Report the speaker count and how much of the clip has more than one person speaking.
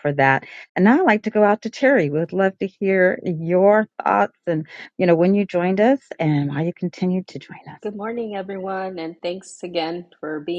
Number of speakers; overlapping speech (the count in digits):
2, no overlap